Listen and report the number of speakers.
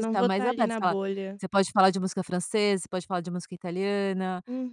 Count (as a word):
two